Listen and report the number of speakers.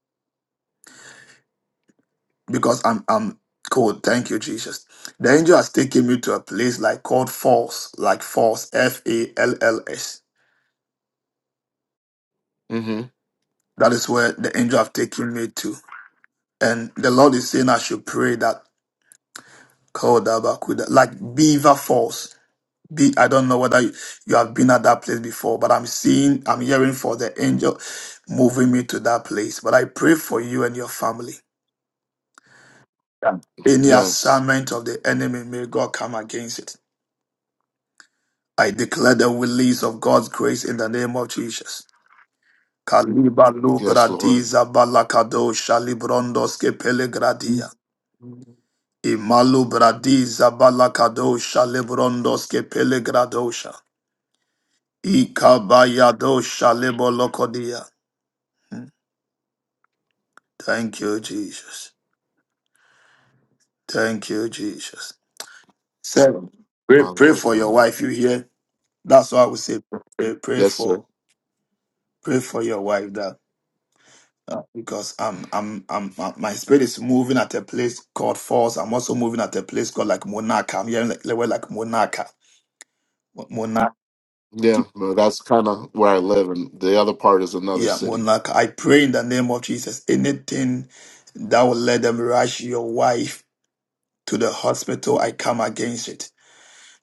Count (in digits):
2